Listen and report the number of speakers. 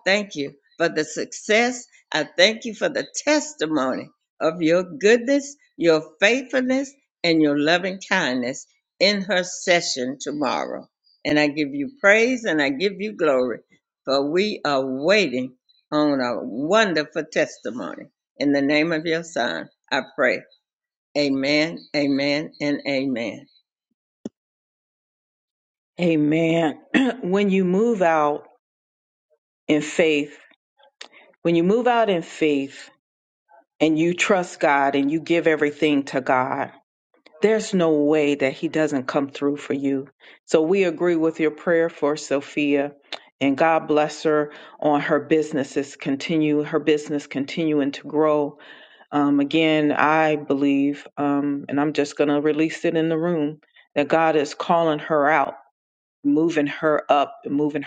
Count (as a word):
two